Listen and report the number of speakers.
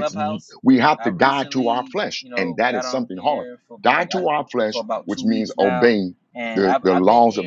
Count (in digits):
2